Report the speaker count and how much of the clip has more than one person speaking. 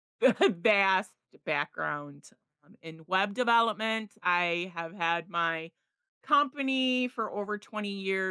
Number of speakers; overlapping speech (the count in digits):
1, no overlap